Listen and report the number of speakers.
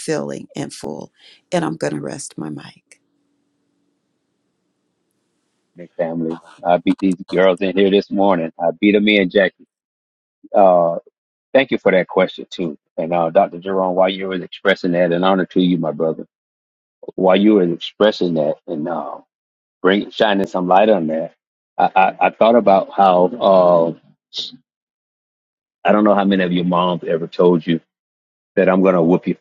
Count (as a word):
two